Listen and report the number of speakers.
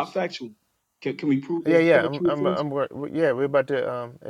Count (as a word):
two